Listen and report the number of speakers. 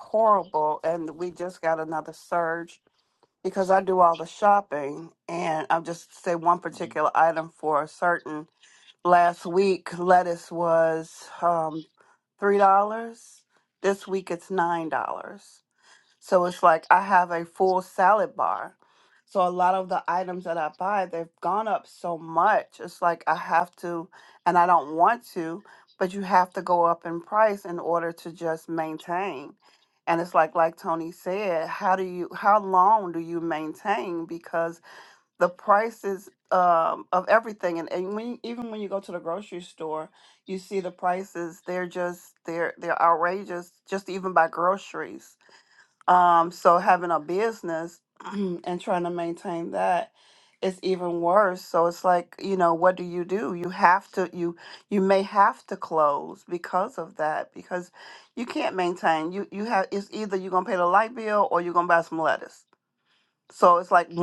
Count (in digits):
1